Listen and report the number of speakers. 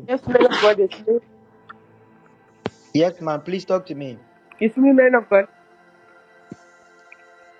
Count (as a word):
two